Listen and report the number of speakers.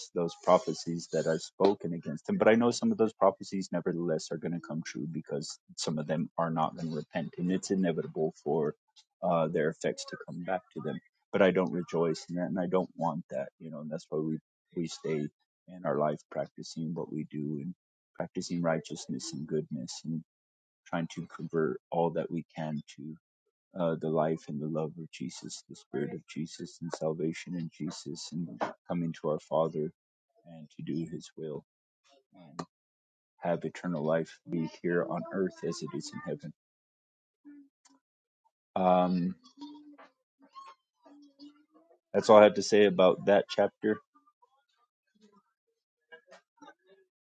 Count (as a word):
one